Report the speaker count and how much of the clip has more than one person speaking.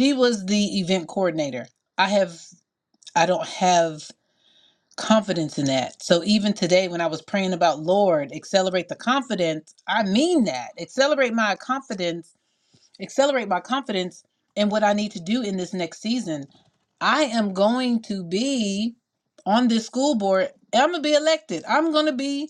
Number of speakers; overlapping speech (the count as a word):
one, no overlap